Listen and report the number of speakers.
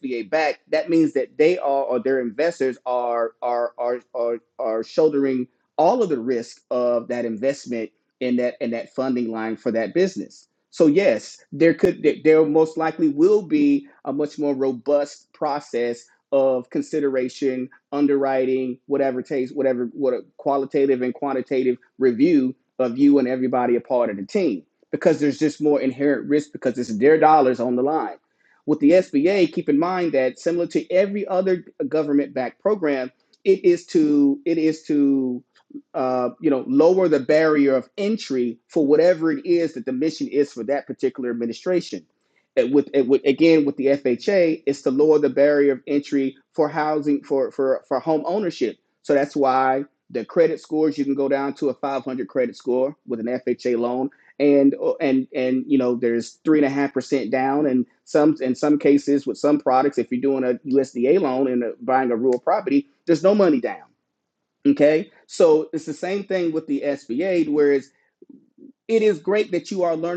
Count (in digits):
1